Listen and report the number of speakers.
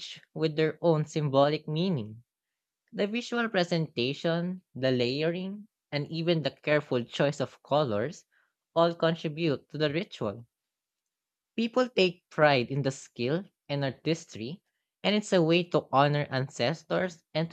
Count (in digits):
1